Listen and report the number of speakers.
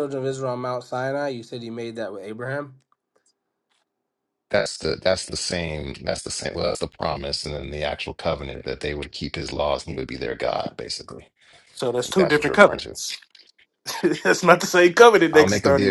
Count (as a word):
three